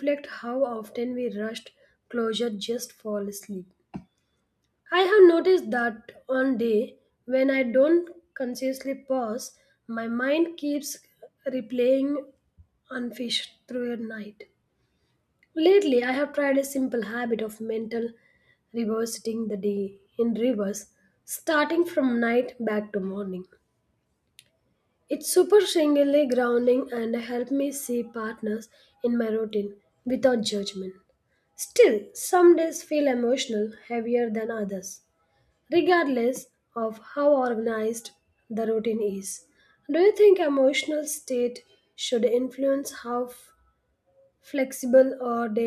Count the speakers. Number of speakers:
1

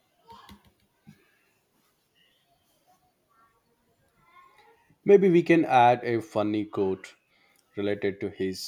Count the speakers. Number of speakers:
1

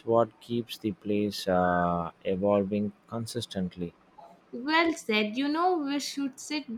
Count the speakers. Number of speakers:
2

